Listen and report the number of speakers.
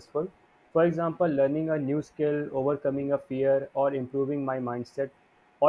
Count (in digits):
1